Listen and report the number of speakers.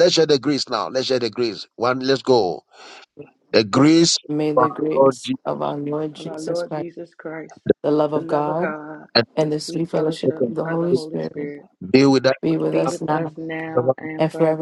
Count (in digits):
3